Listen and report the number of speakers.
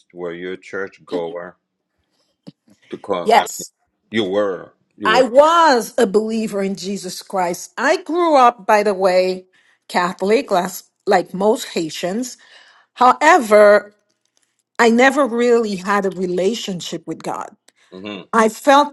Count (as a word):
two